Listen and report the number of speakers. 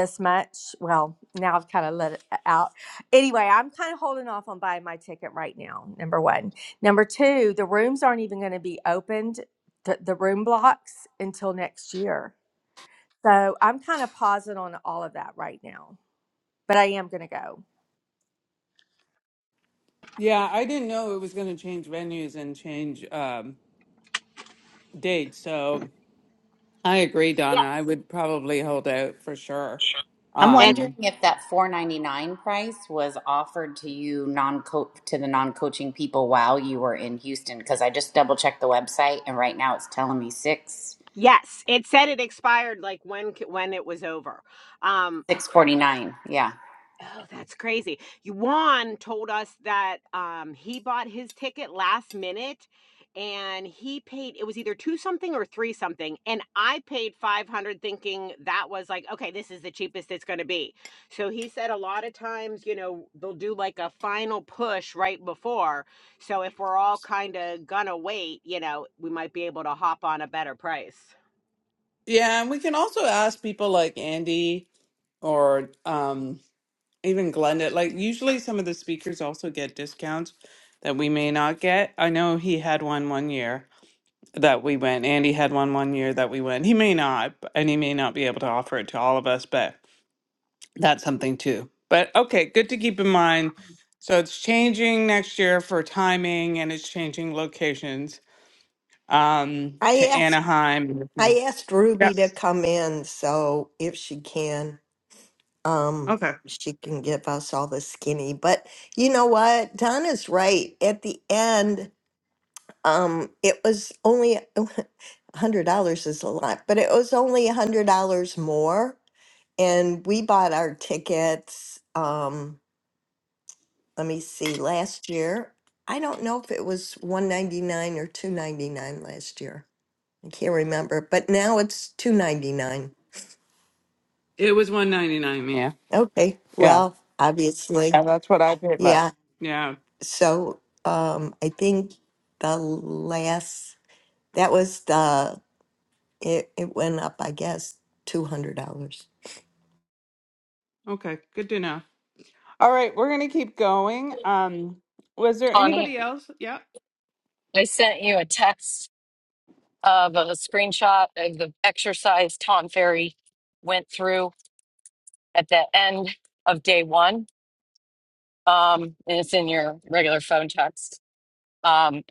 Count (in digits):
6